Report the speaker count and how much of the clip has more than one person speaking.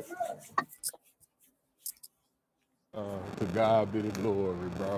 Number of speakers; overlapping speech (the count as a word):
one, no overlap